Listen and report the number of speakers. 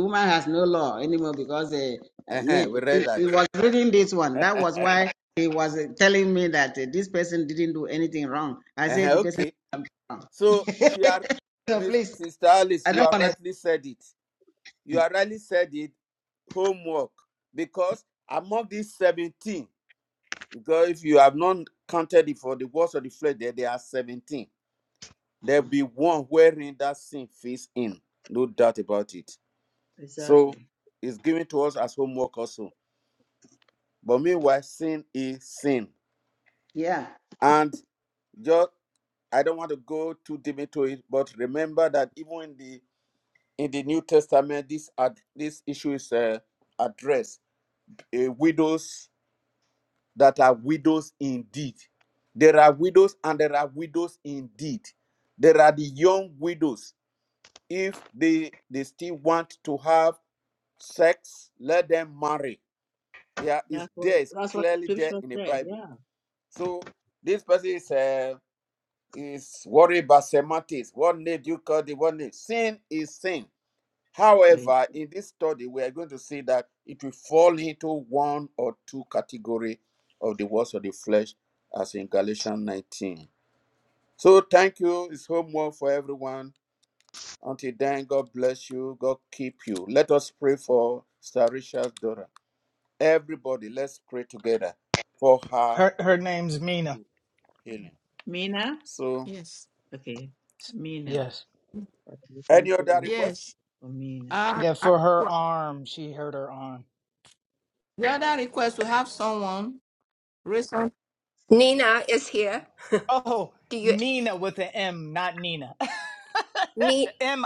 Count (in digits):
6